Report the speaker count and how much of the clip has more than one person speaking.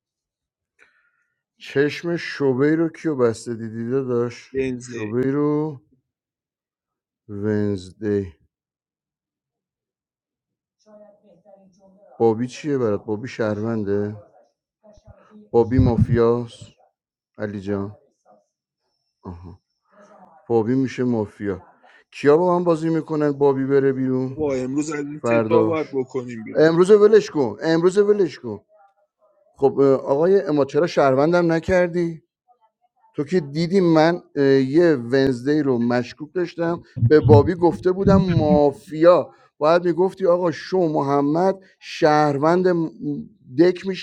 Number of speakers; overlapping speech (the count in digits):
2, about 2%